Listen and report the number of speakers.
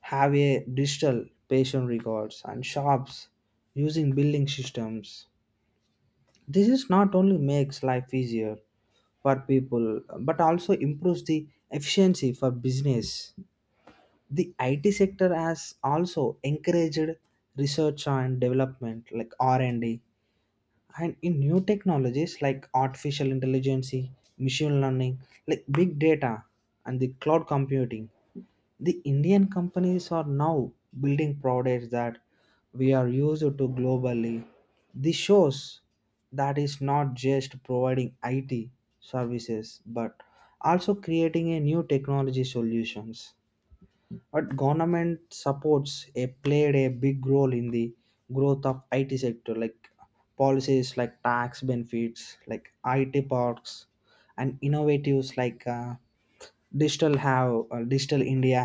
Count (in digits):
1